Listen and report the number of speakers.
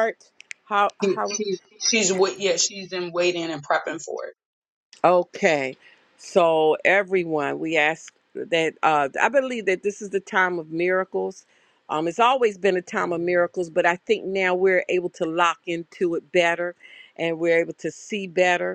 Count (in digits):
2